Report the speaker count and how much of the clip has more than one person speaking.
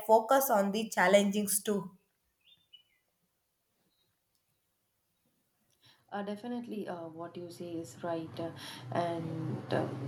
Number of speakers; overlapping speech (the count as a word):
two, no overlap